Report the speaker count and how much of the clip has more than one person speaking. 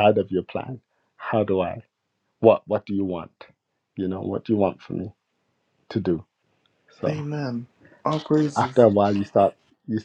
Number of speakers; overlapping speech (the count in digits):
2, about 4%